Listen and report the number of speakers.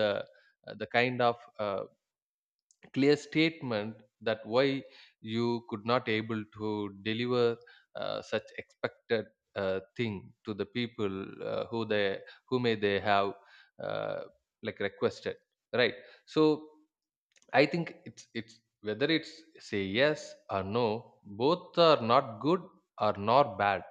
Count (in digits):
1